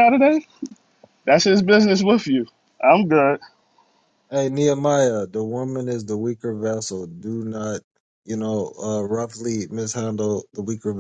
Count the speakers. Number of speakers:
2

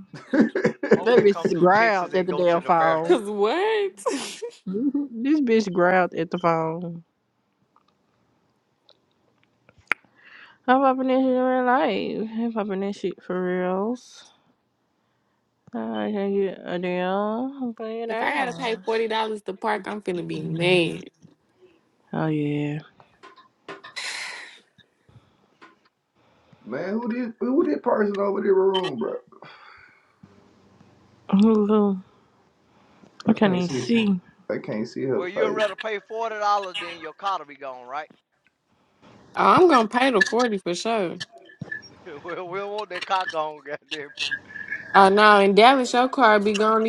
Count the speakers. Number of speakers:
4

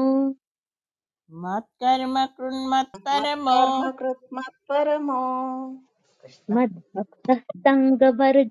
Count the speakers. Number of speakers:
3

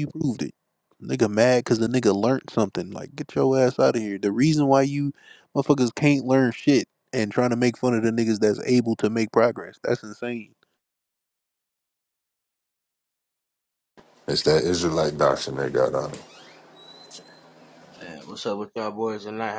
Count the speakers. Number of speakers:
3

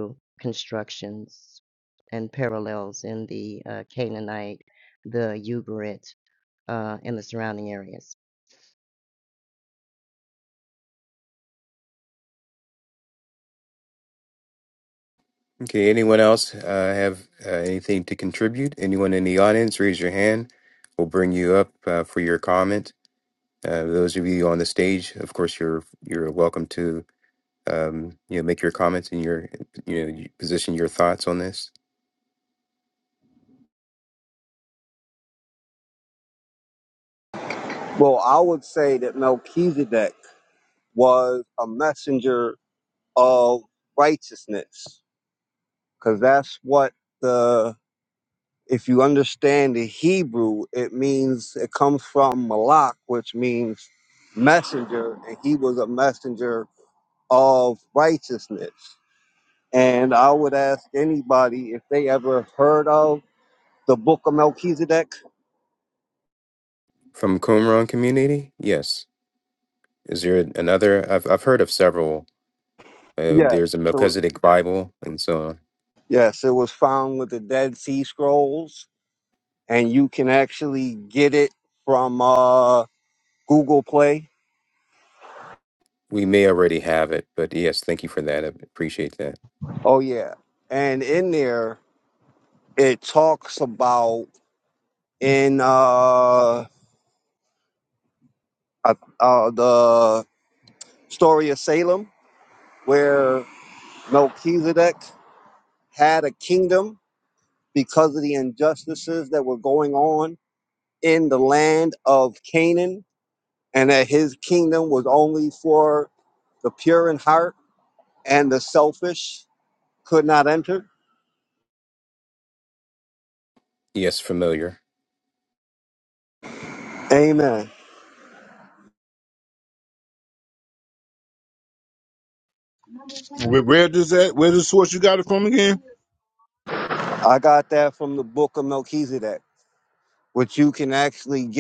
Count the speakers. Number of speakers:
4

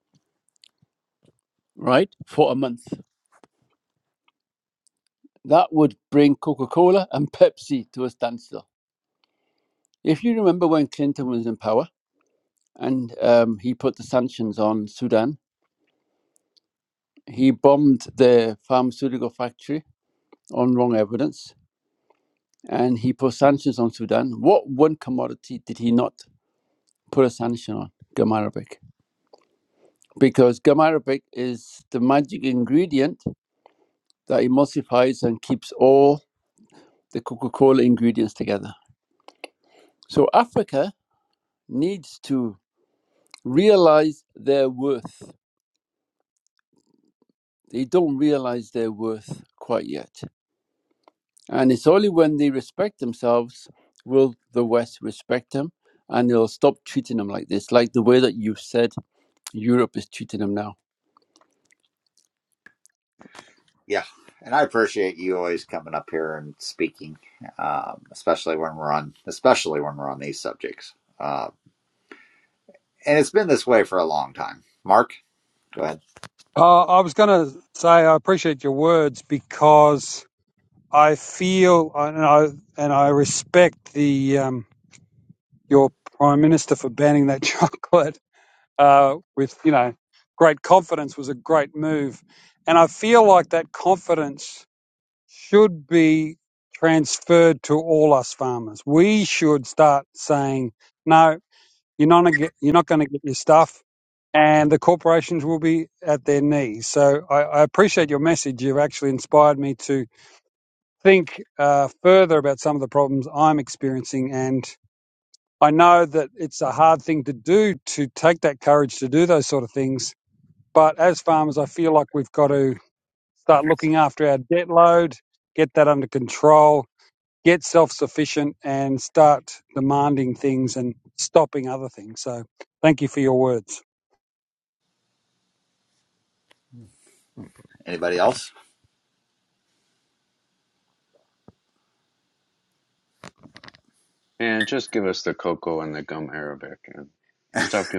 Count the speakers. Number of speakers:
4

